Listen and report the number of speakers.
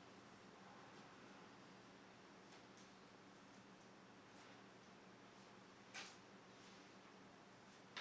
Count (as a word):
zero